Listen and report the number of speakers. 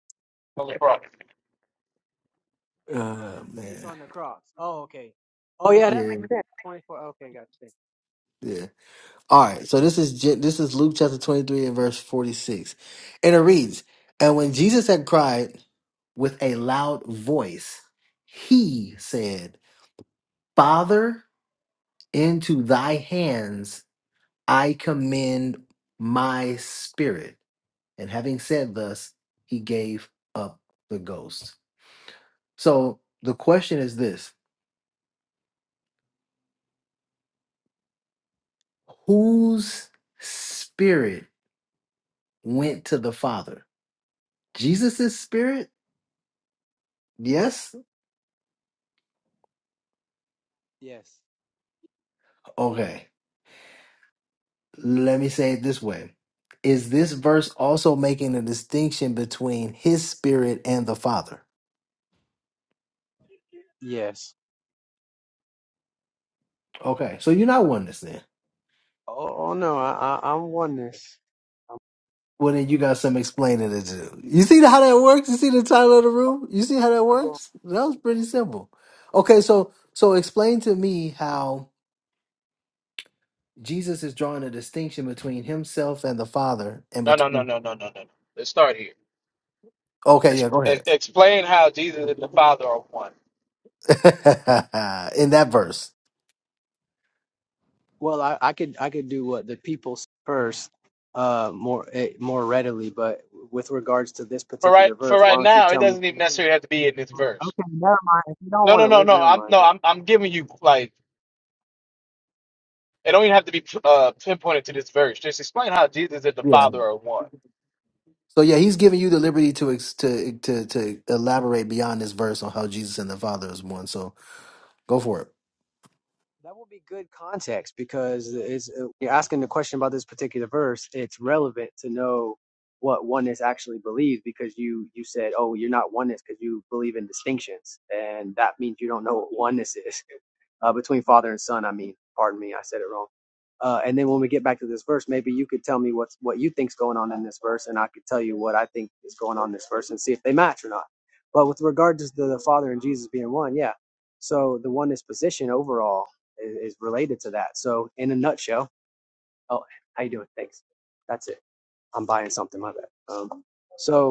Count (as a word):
three